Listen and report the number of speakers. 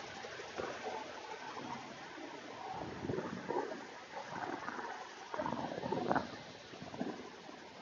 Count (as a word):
zero